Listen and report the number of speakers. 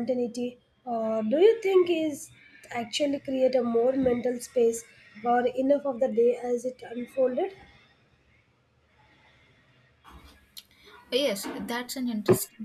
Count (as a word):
two